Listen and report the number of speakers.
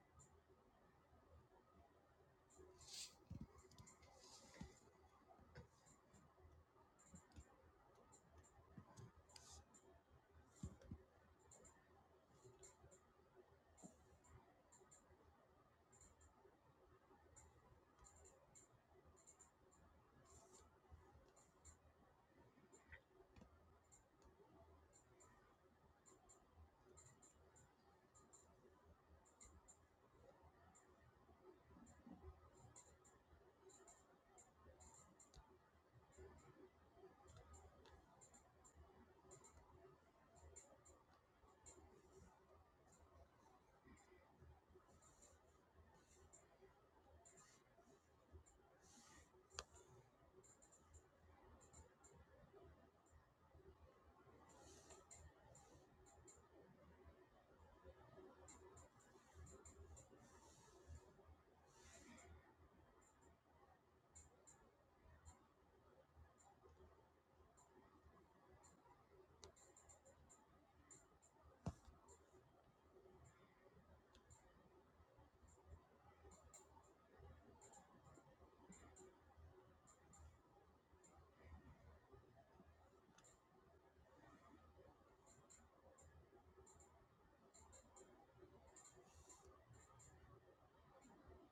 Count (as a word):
zero